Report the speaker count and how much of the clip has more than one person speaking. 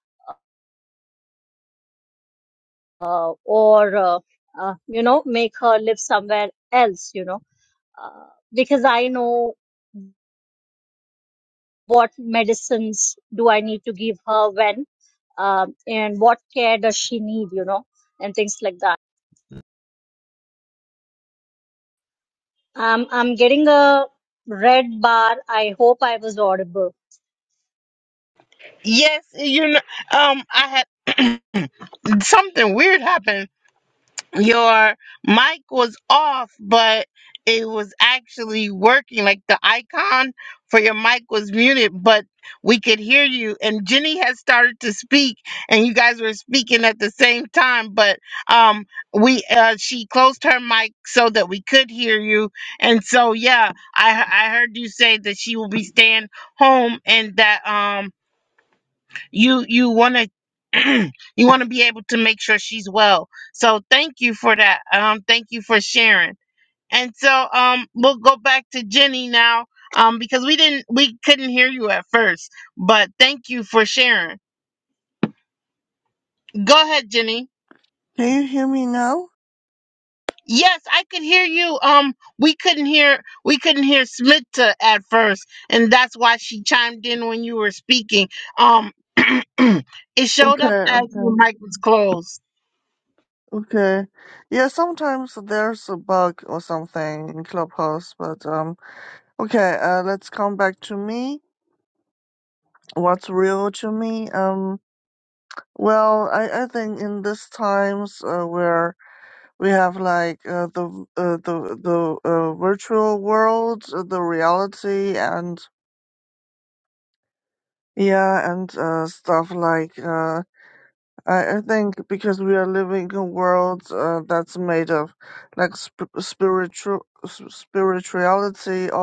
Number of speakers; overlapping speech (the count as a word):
three, about 1%